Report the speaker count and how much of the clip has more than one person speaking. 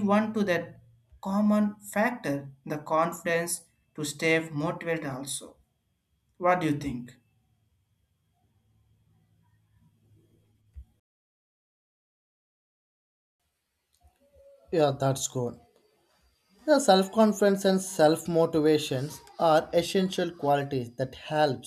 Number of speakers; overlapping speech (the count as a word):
two, no overlap